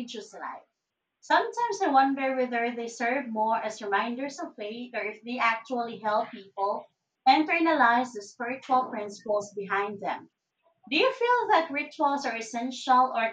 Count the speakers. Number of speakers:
1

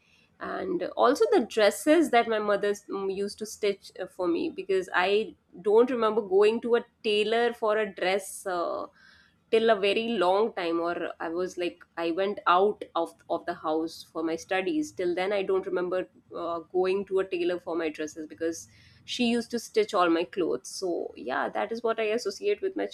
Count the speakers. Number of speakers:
1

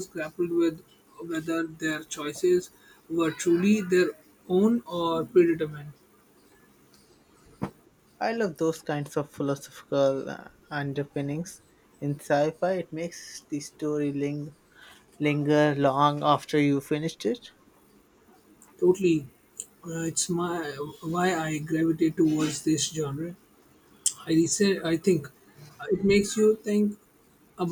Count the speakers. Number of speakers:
2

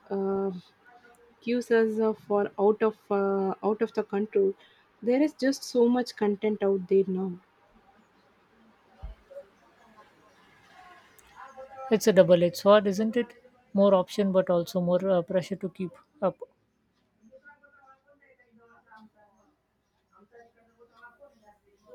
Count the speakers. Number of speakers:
2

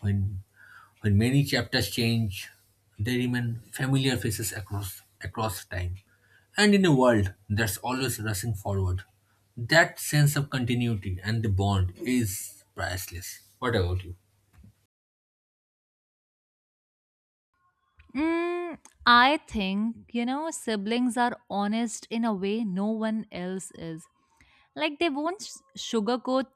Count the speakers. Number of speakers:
2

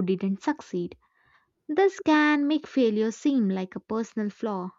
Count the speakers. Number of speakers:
1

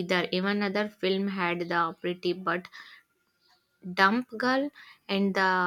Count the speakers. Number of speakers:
1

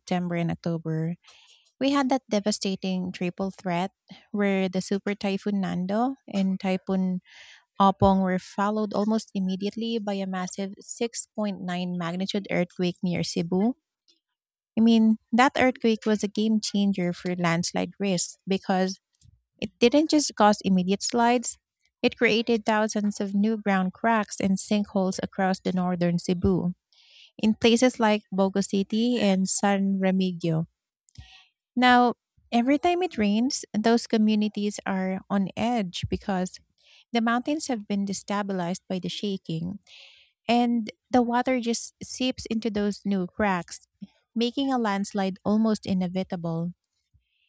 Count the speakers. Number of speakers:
1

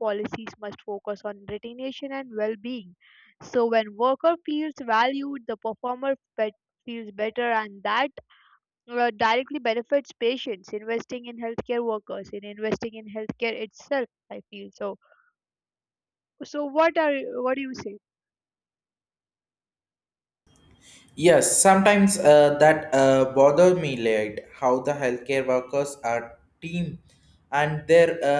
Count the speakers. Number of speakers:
2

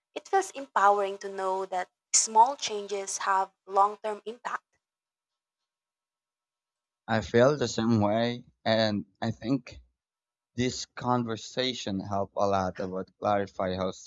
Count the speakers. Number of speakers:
2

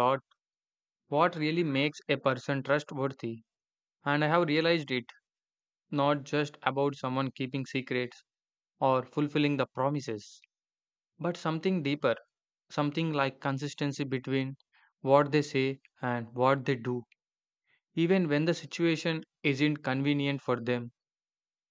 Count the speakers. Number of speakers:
1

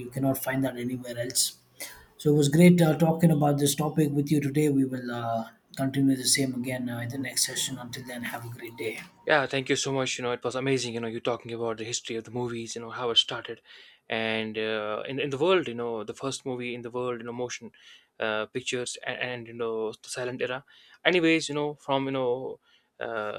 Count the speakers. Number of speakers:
2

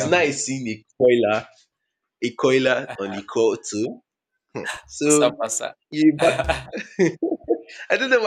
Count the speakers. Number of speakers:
2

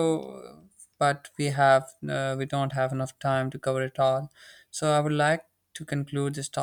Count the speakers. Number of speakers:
1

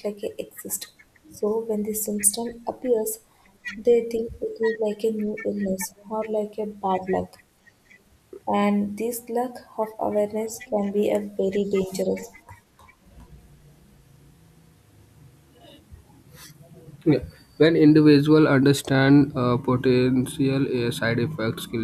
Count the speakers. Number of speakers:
2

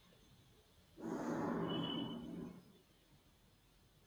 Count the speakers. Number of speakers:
0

